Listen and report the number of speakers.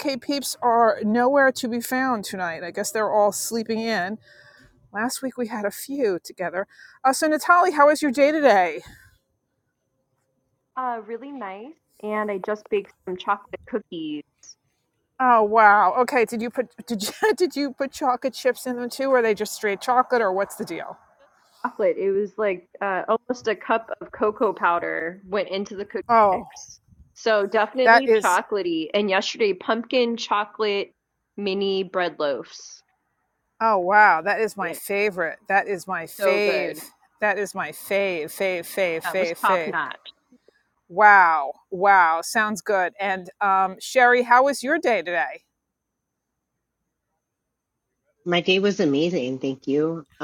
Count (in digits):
3